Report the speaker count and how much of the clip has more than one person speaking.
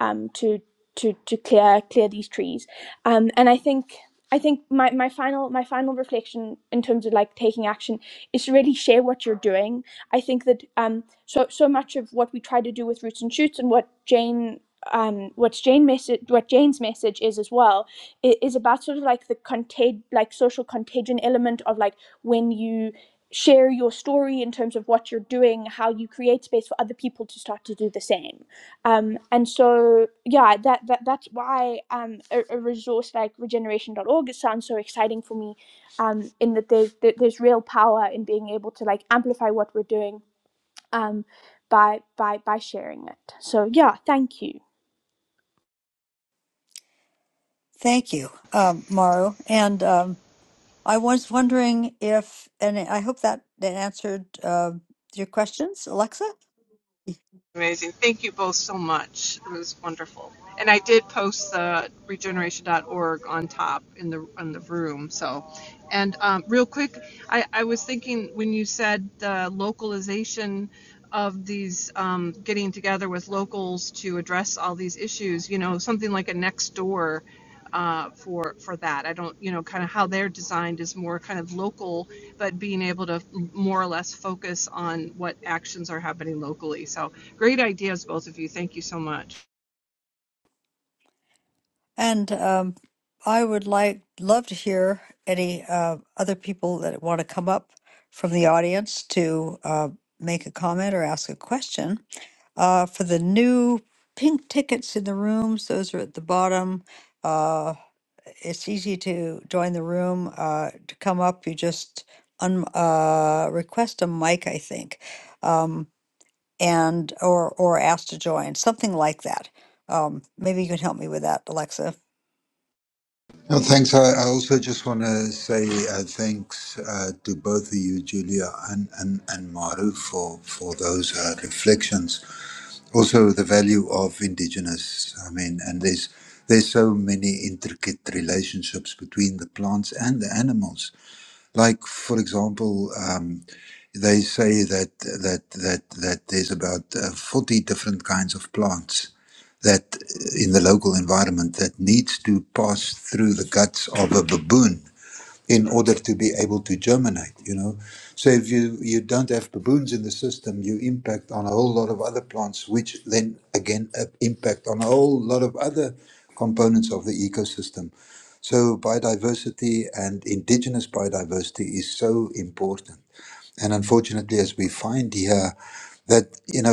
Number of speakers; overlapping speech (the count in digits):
4, no overlap